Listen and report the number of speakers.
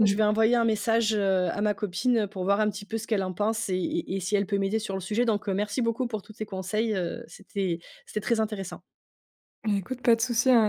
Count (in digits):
2